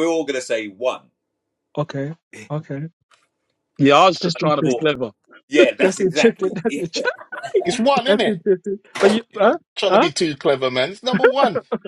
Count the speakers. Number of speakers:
4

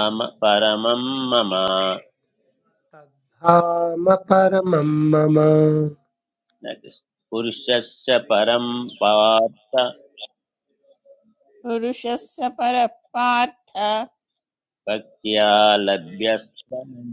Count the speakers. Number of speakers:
3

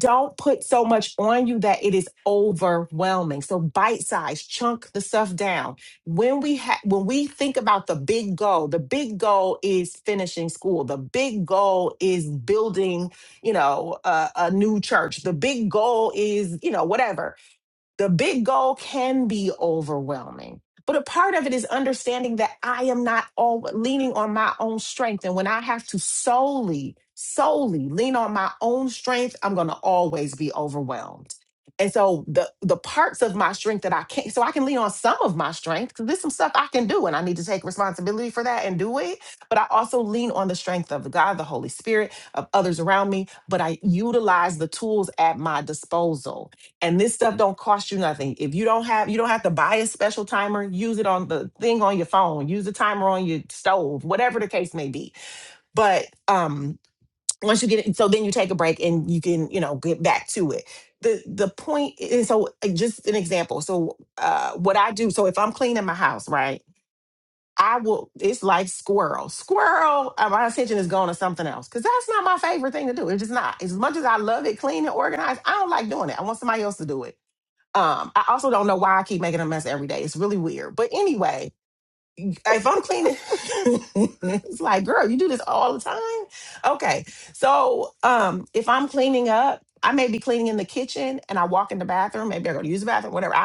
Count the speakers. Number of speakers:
1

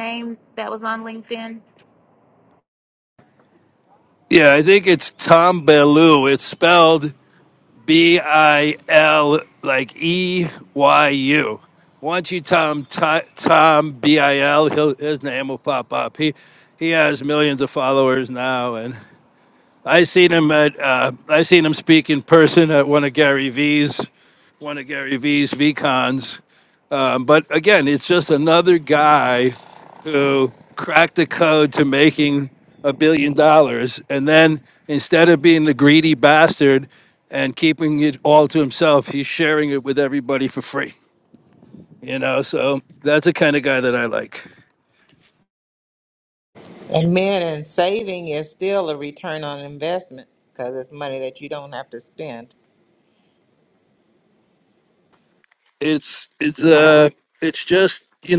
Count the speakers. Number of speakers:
3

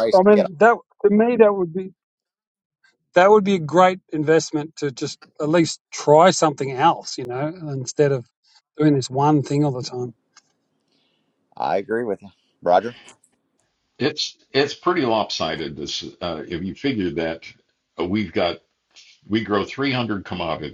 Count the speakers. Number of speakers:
3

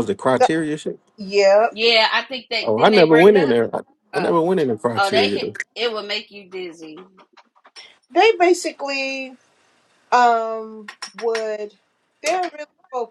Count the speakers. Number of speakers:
3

